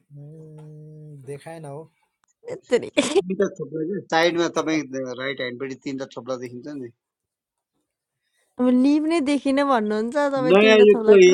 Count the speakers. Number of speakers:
3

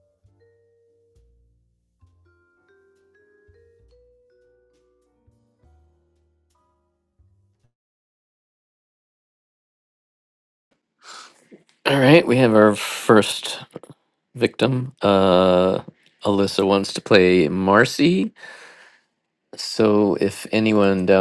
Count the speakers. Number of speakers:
1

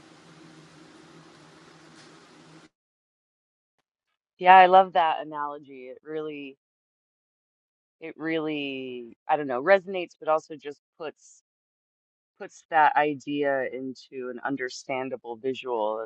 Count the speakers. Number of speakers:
1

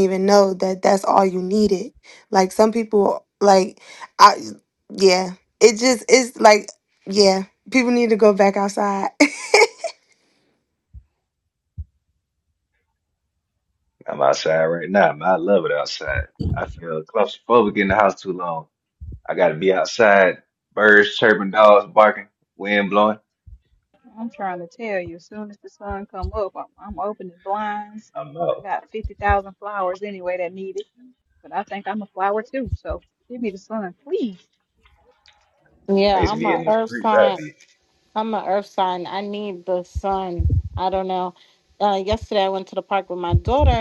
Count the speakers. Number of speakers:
4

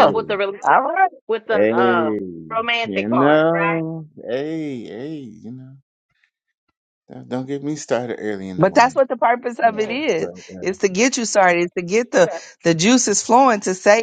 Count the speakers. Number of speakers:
3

